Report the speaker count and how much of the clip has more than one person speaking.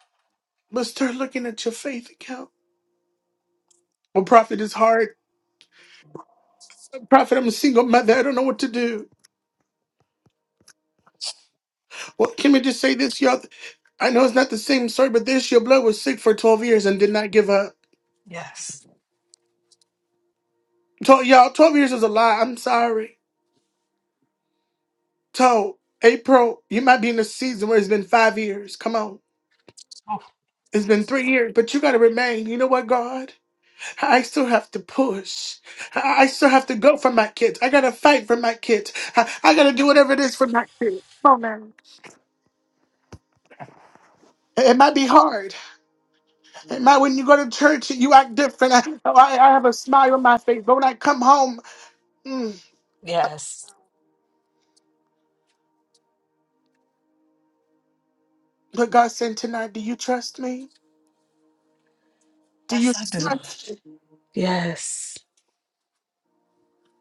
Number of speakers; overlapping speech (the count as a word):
two, about 1%